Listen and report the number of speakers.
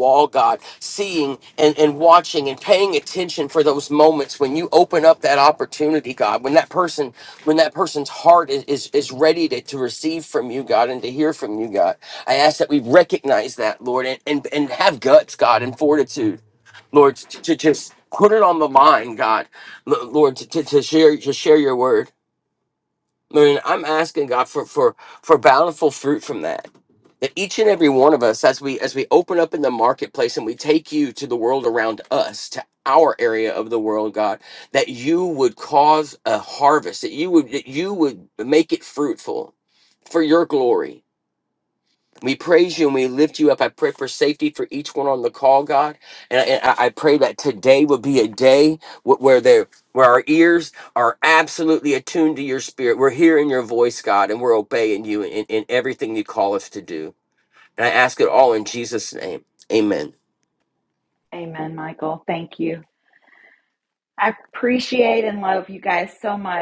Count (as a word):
two